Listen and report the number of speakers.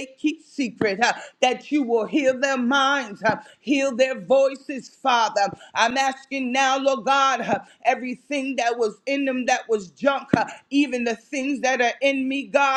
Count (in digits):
1